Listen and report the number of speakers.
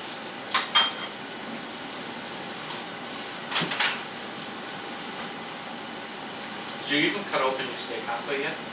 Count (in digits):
1